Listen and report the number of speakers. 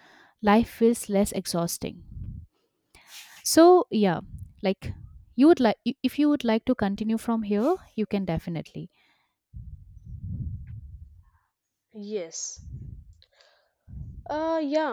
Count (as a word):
two